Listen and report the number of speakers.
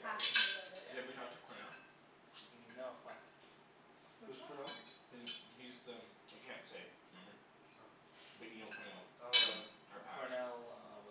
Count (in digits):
4